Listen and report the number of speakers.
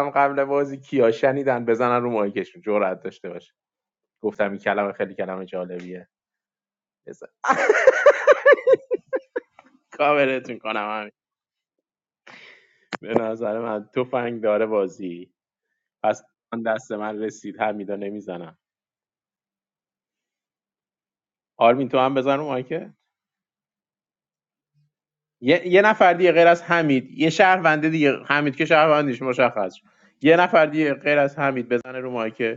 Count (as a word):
one